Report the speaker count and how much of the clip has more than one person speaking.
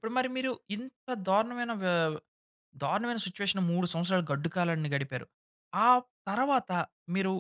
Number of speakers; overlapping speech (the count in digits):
1, no overlap